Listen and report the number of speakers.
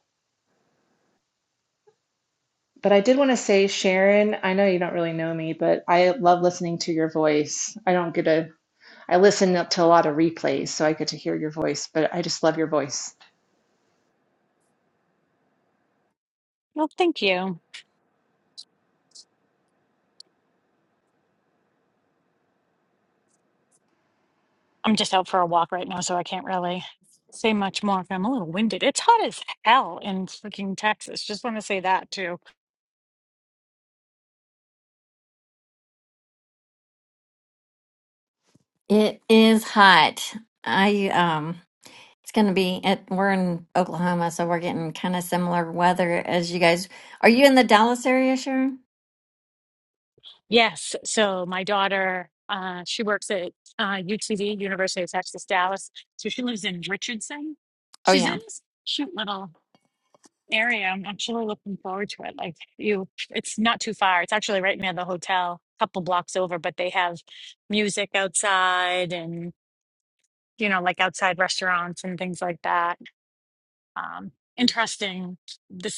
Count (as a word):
three